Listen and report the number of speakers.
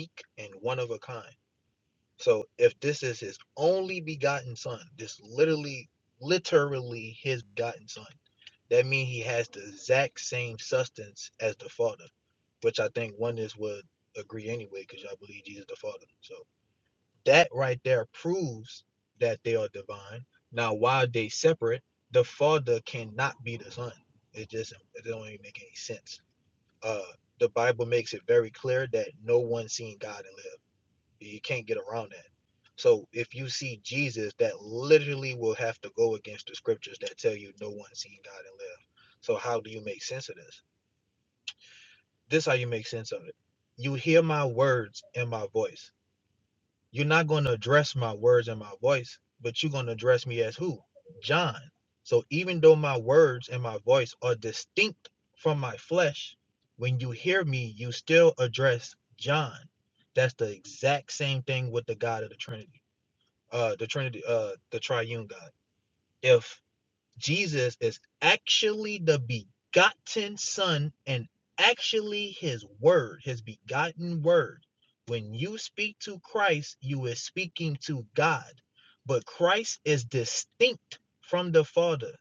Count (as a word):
one